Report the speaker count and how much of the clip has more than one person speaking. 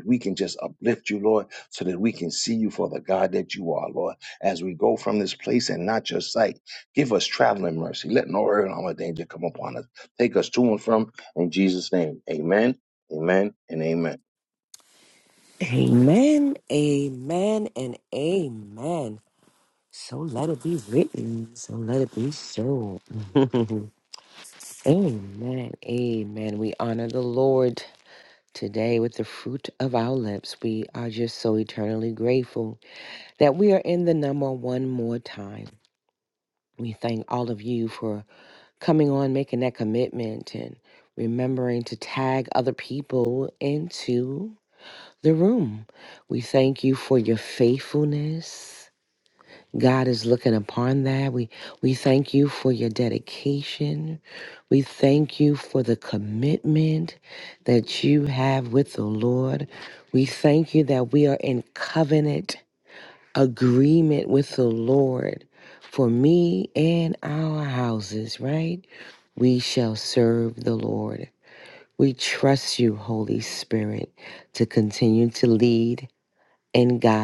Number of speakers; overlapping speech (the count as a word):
two, no overlap